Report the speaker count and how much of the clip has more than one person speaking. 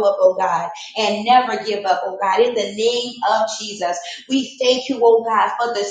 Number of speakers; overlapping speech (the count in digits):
1, no overlap